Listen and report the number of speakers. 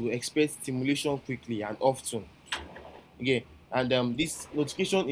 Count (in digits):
1